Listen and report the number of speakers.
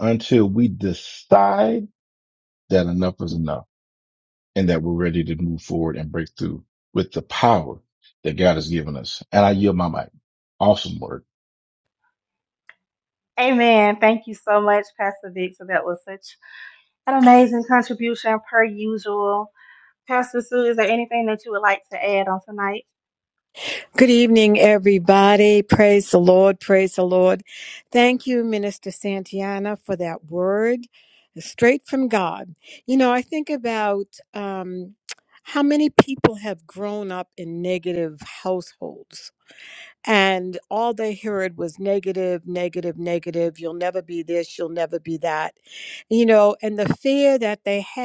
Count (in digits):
3